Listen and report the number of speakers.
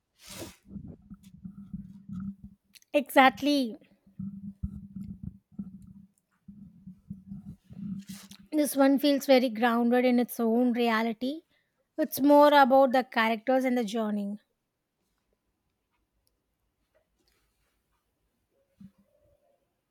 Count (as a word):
one